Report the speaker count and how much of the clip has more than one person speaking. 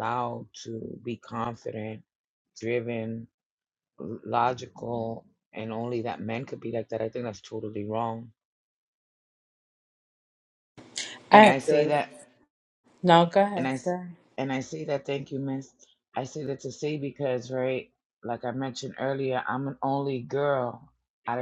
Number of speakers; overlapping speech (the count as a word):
two, about 5%